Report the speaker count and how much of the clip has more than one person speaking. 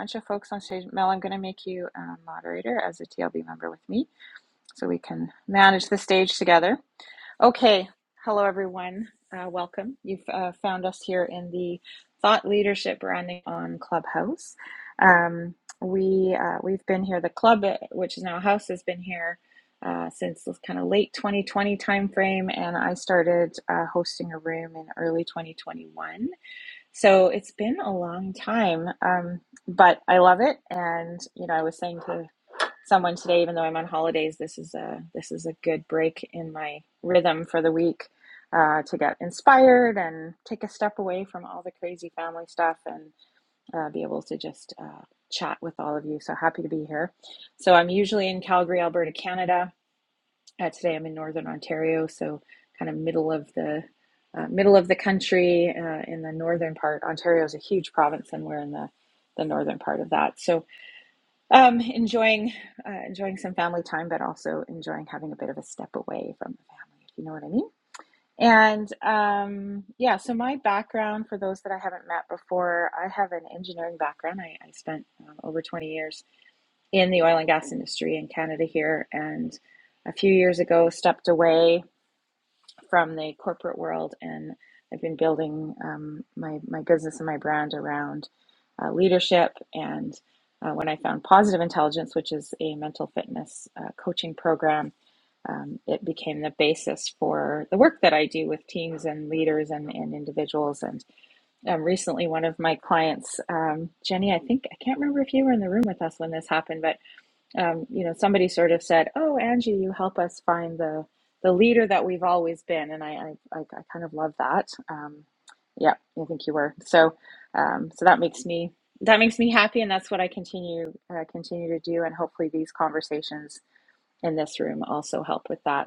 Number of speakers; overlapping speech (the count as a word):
one, no overlap